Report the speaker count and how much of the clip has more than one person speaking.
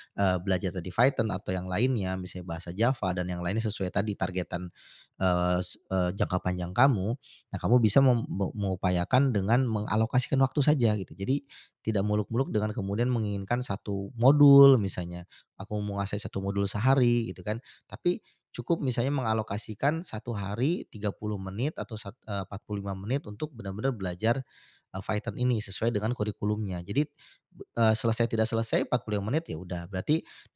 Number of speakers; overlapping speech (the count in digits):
1, no overlap